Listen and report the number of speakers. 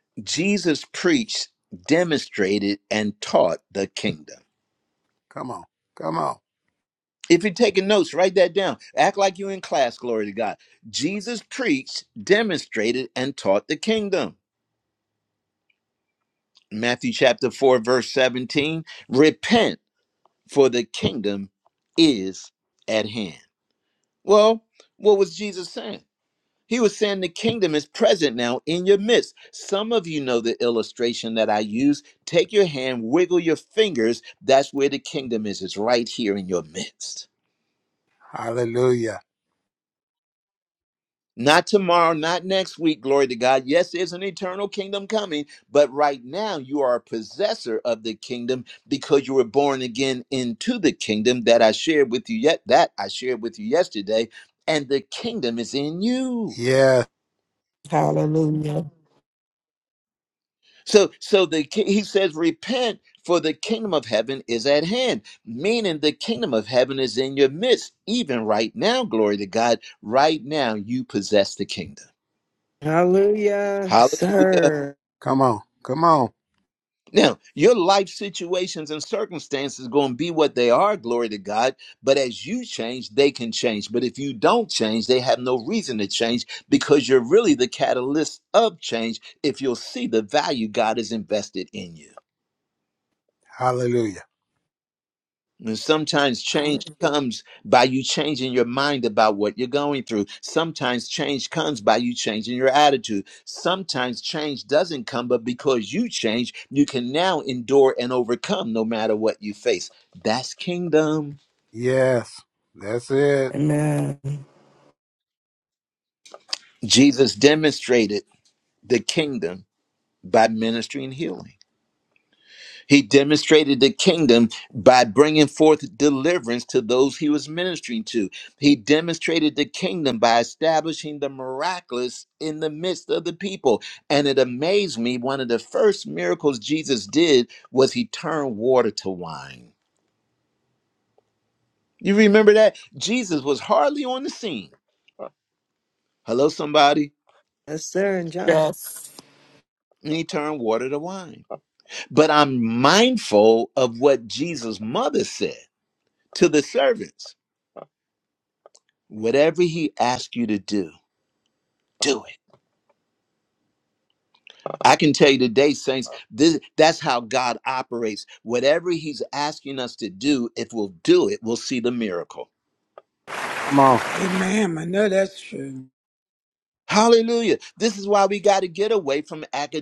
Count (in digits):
5